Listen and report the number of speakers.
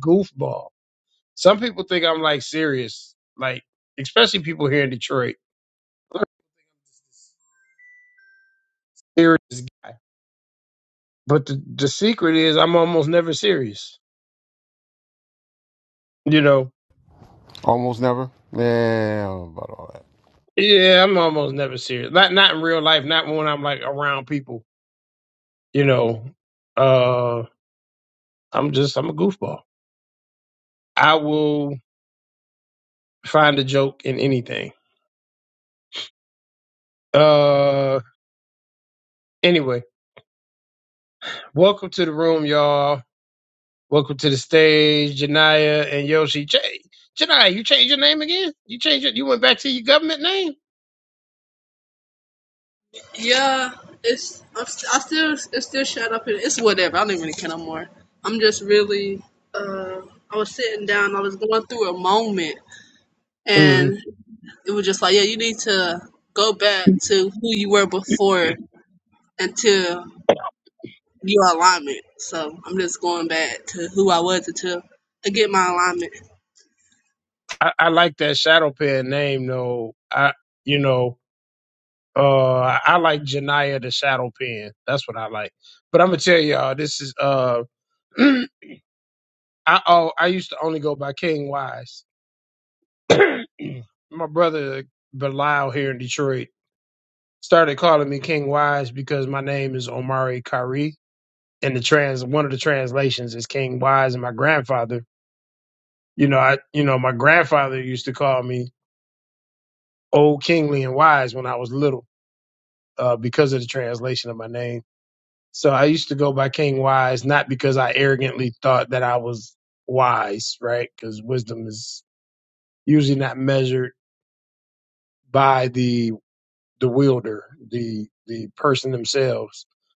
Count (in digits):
3